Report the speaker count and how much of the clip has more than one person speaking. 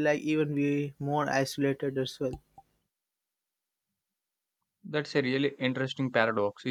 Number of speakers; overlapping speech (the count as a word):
two, no overlap